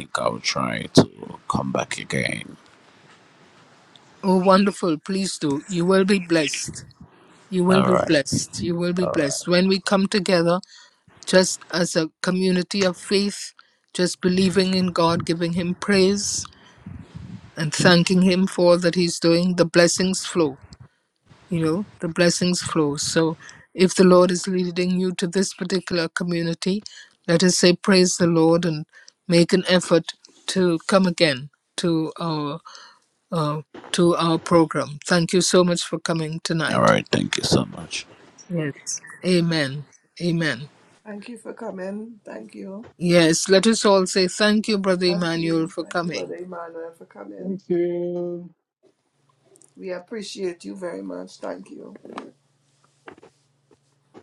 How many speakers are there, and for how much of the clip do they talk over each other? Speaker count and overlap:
four, about 5%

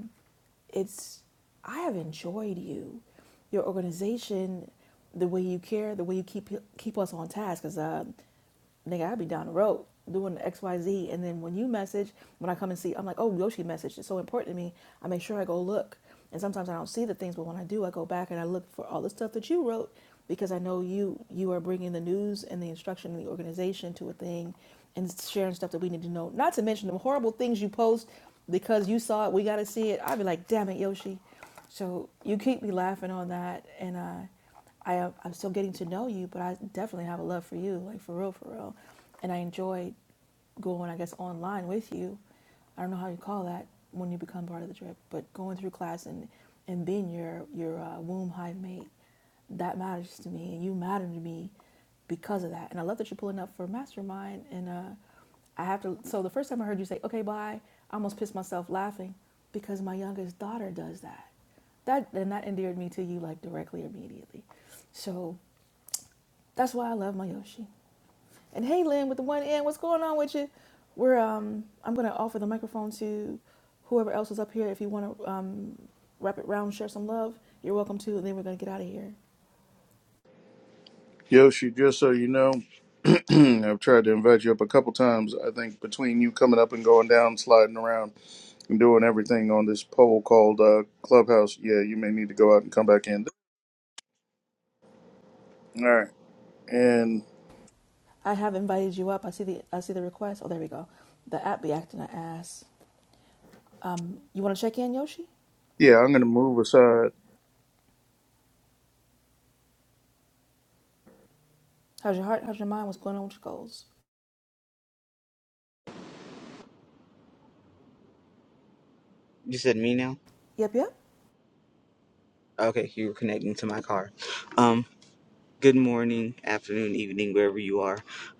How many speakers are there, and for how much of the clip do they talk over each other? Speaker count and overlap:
three, no overlap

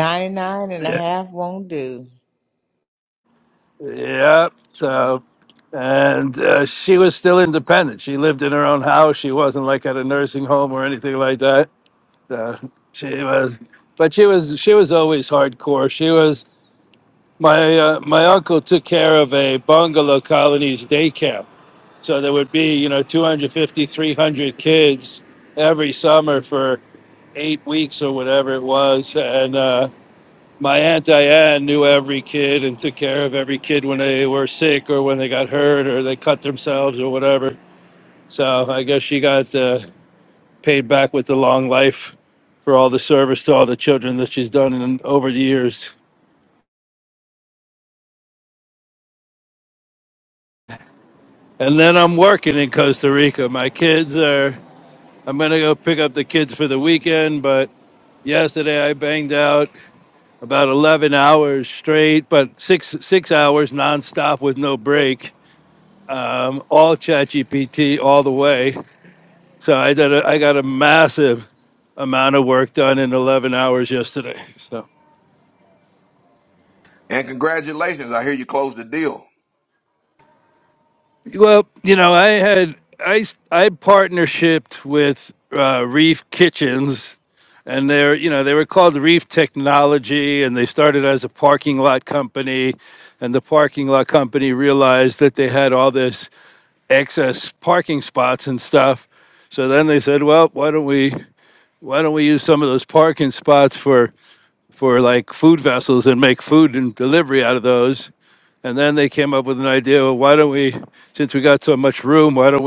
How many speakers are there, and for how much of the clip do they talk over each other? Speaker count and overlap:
three, no overlap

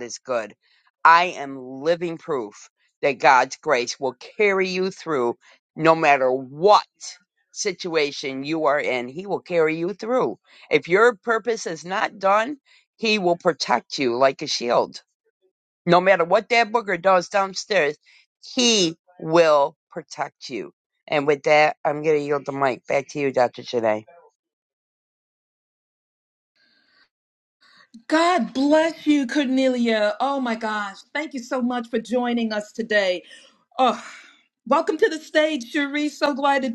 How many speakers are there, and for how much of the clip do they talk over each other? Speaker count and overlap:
two, no overlap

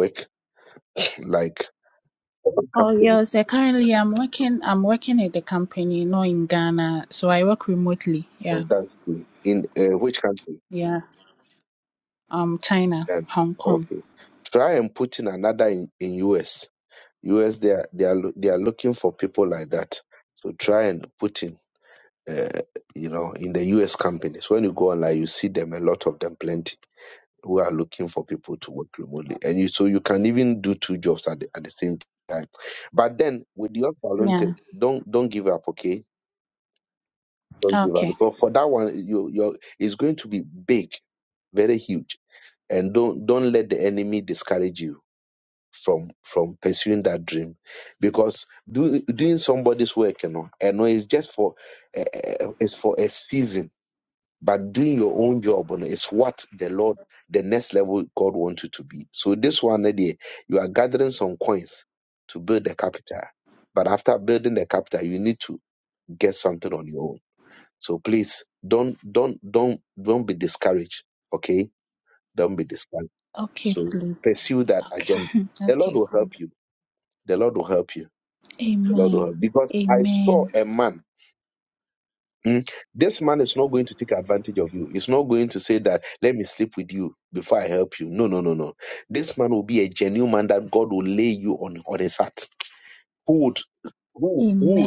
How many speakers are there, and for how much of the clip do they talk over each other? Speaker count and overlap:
two, about 5%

